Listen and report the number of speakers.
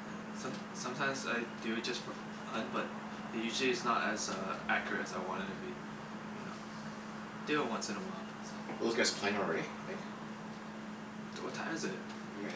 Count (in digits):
2